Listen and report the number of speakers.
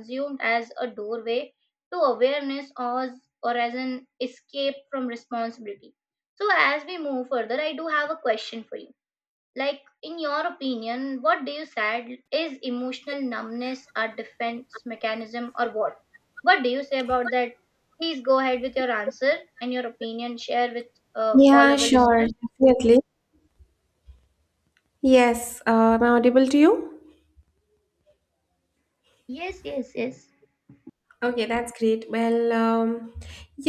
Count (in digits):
2